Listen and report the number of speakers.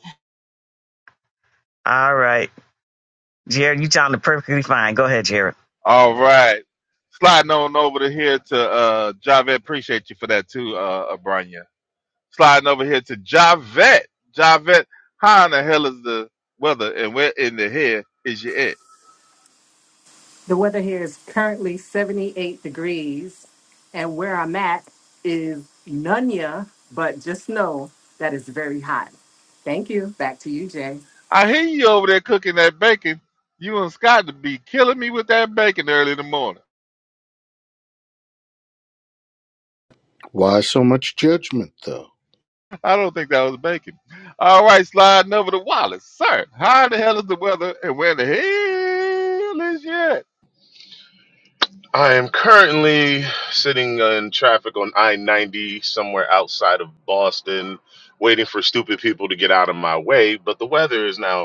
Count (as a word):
five